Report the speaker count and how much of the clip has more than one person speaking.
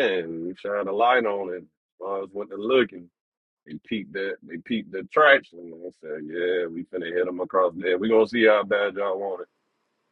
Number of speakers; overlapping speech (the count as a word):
one, no overlap